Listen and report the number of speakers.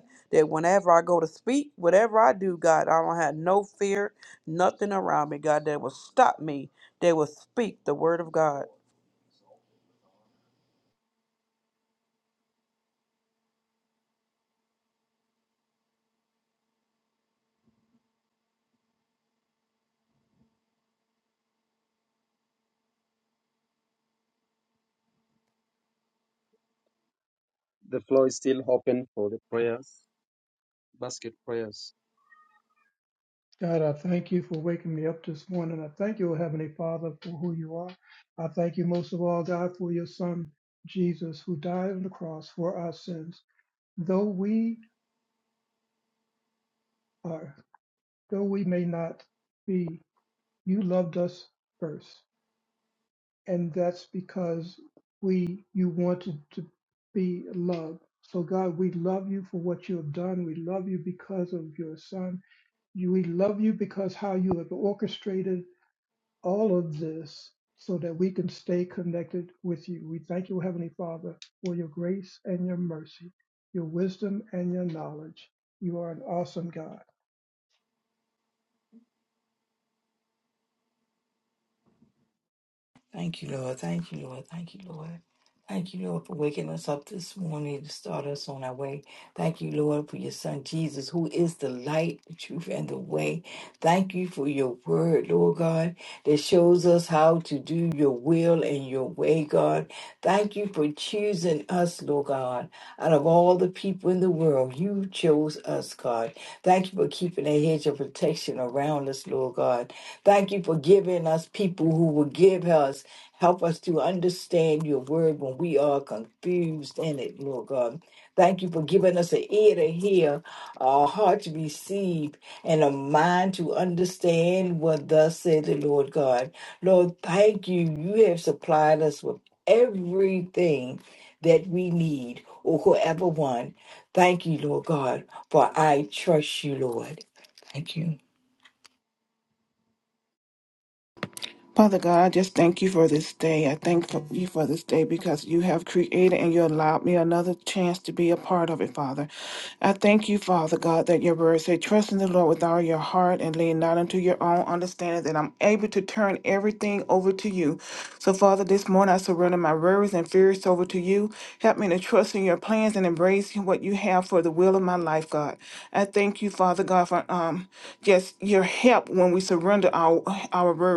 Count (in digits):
5